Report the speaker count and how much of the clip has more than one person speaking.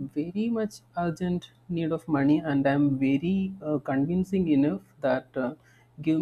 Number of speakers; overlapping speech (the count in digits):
1, no overlap